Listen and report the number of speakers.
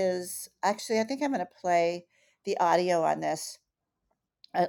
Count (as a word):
one